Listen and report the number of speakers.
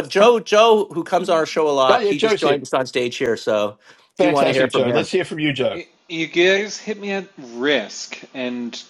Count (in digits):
3